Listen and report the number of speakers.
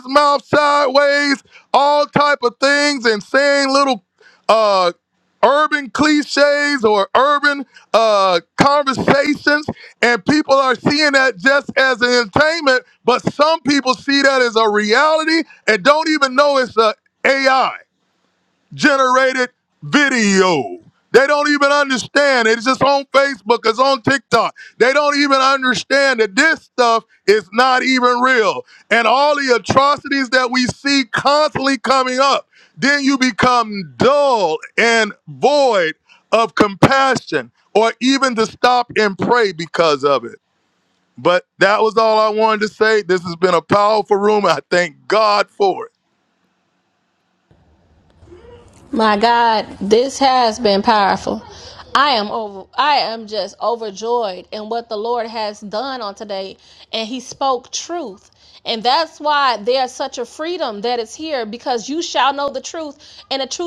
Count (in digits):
2